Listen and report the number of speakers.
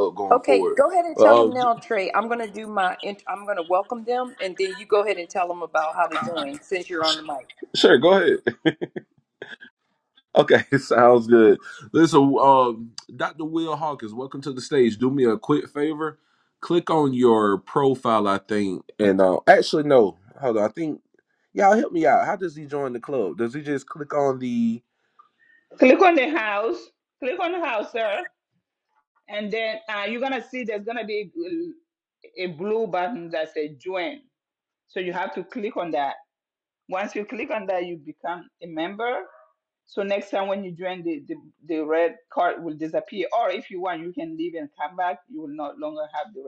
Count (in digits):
3